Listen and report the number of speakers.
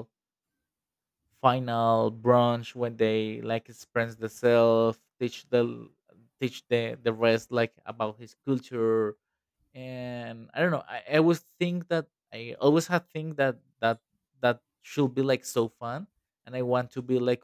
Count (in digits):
1